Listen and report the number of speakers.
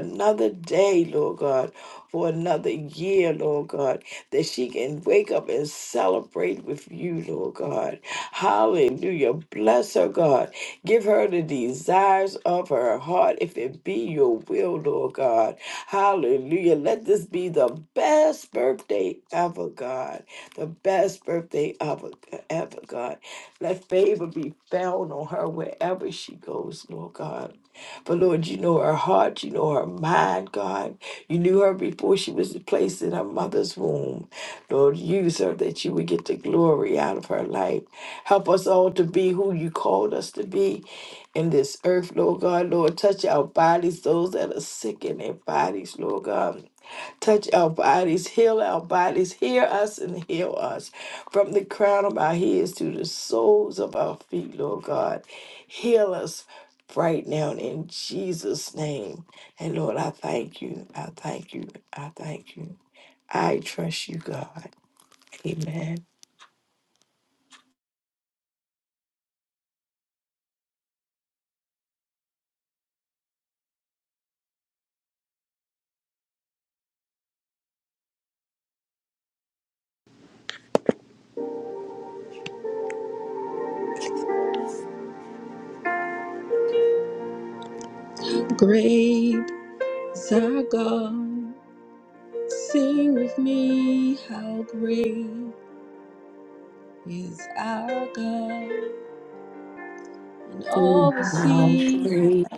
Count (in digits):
2